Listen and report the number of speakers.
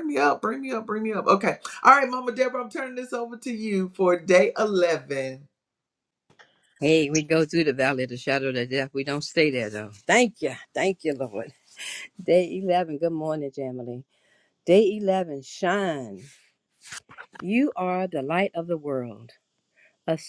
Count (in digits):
2